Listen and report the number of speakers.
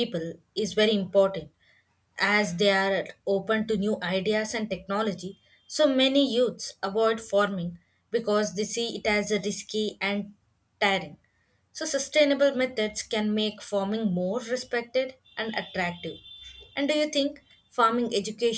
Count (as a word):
one